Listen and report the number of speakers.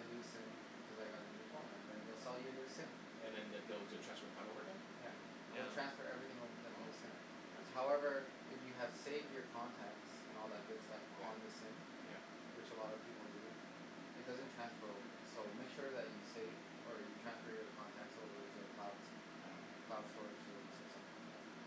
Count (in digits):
2